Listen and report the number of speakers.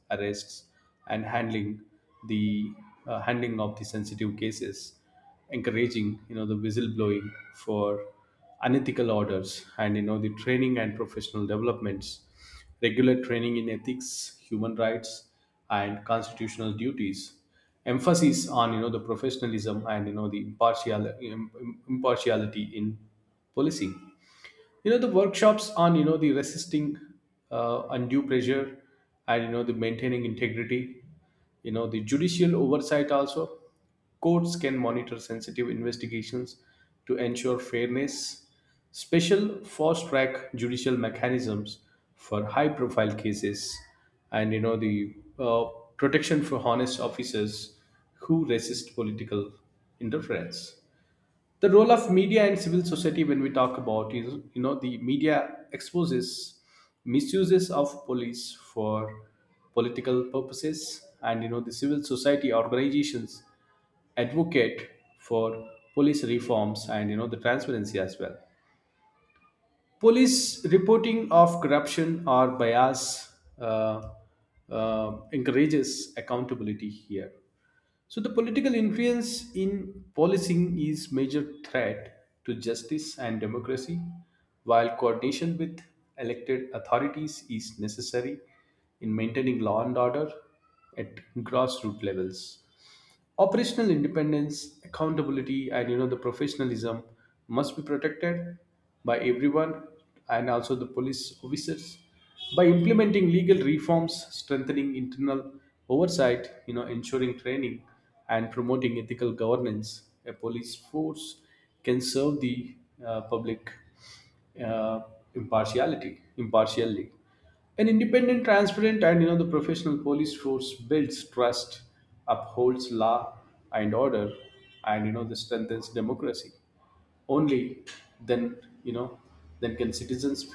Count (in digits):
1